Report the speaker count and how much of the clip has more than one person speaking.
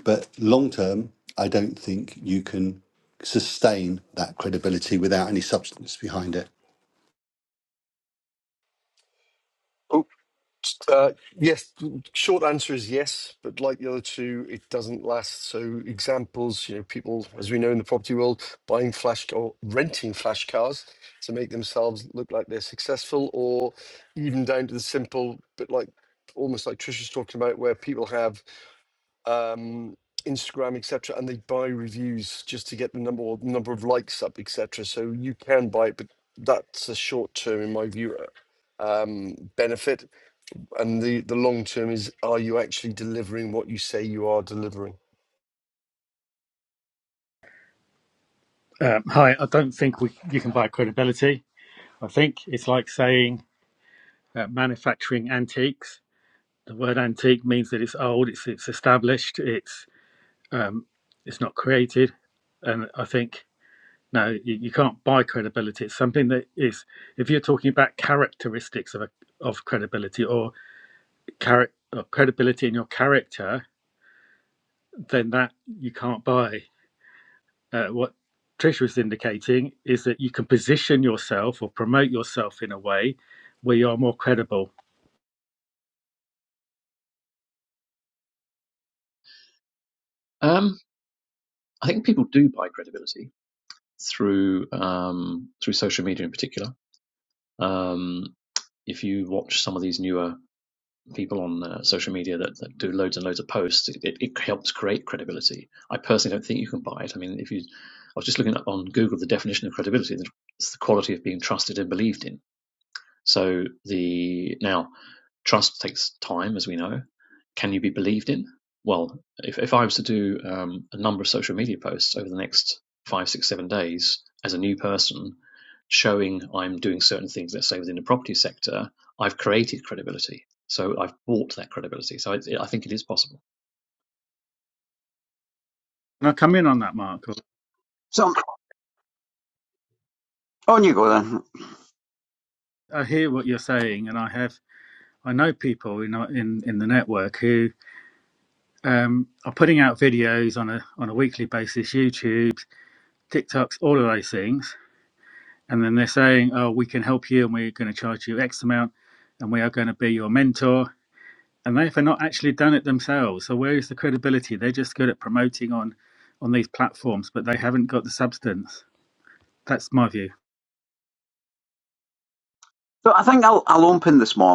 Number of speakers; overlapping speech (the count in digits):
5, no overlap